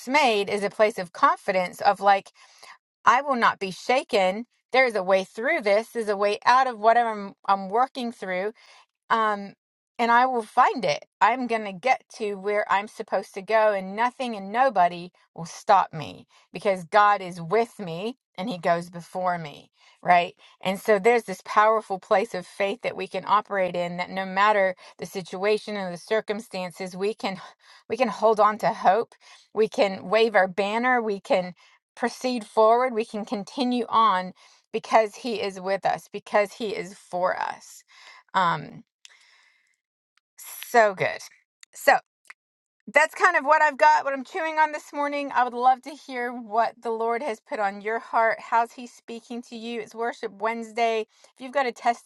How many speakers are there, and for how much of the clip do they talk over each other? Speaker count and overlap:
one, no overlap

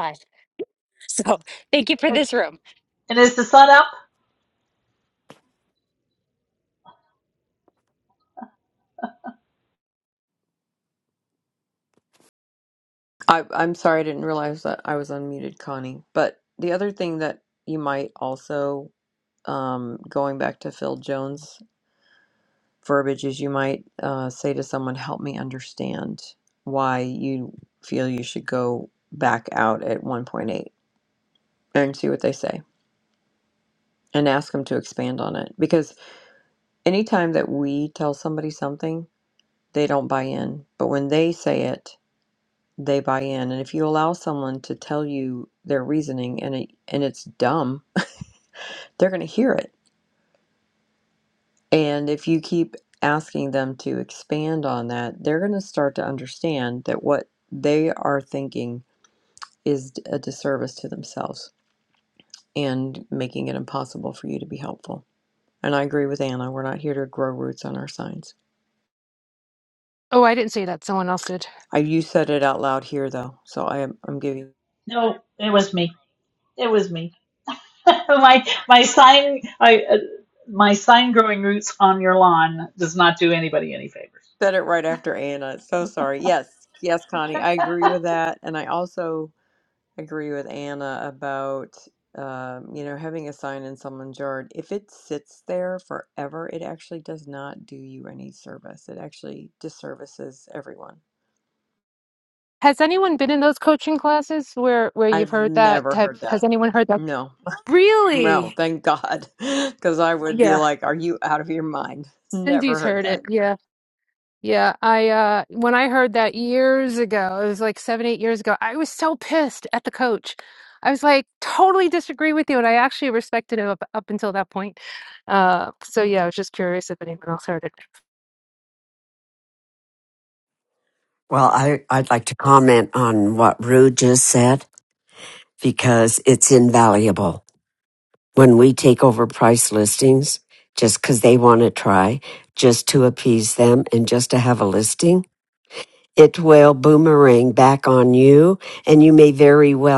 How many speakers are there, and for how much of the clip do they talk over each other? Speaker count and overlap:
five, about 2%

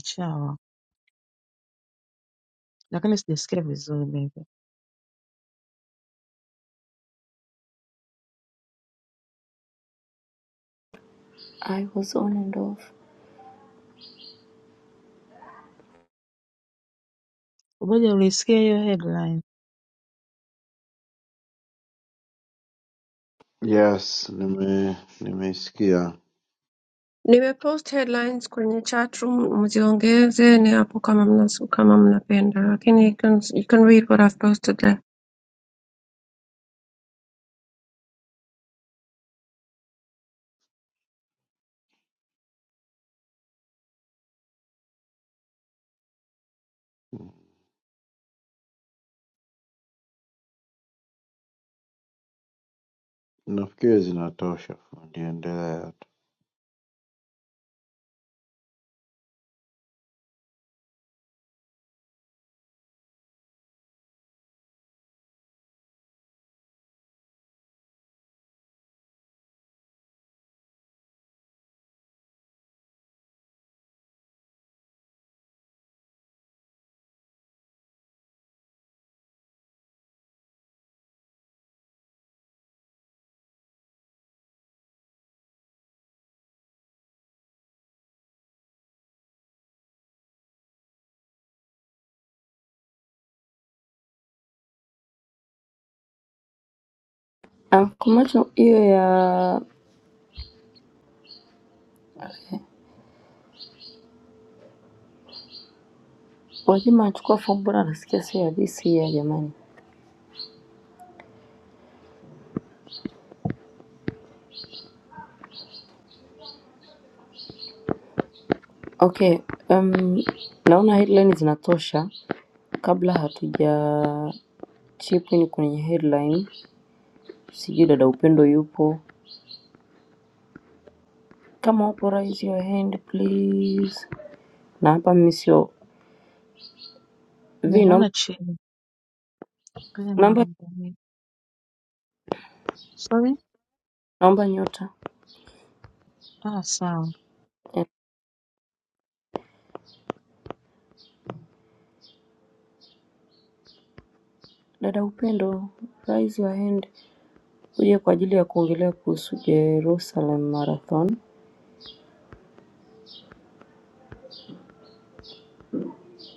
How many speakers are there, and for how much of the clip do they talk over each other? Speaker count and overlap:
four, under 1%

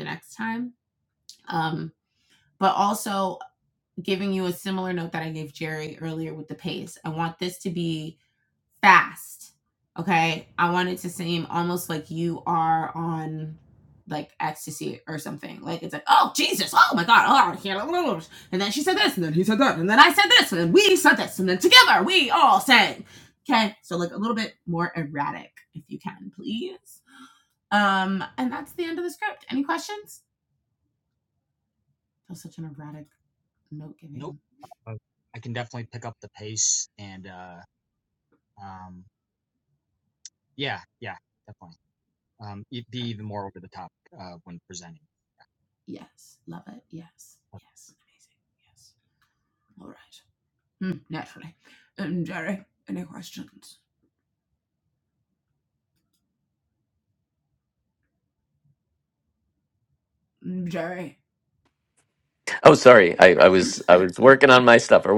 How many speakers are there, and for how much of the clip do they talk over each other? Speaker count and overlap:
three, under 1%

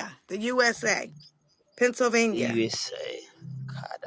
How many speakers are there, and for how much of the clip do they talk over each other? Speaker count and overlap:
two, about 6%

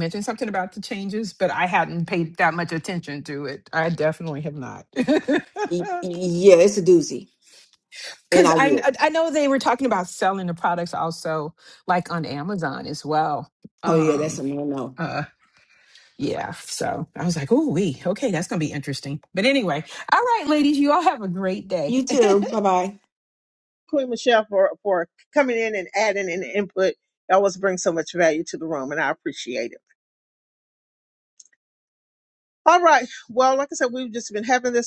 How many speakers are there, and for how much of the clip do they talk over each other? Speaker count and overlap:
three, about 3%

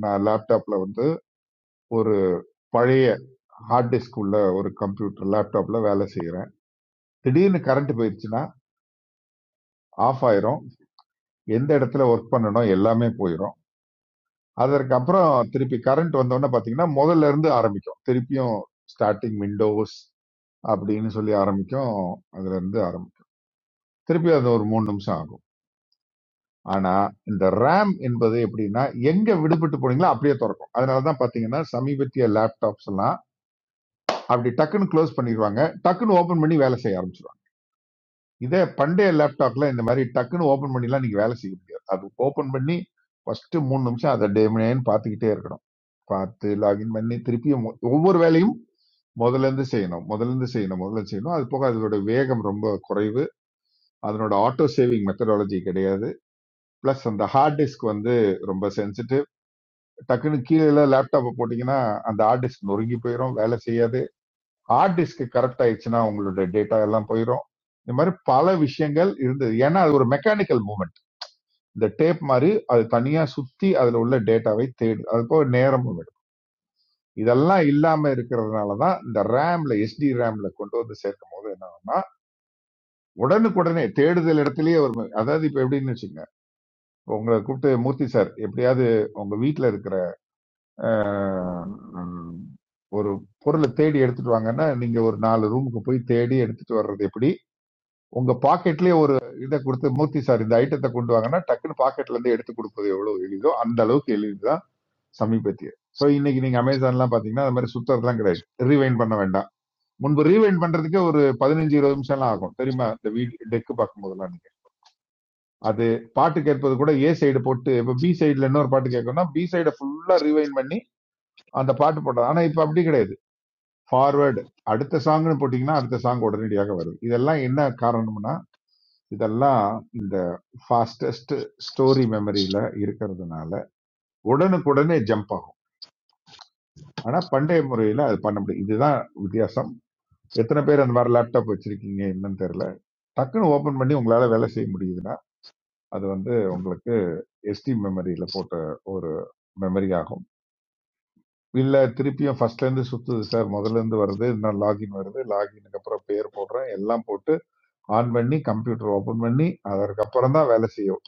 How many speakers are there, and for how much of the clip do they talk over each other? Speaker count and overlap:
one, no overlap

